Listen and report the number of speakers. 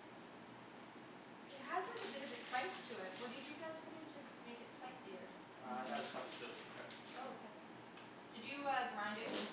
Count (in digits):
2